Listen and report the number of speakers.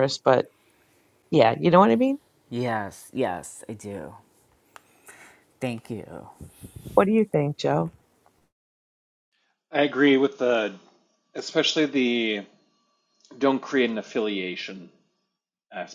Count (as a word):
three